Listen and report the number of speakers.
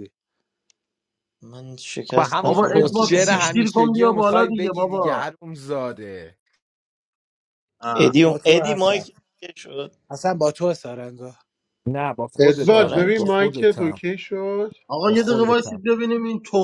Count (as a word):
five